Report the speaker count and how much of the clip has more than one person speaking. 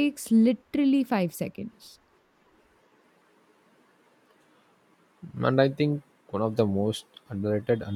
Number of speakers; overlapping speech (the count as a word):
two, no overlap